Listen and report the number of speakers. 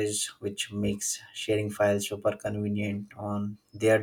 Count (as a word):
one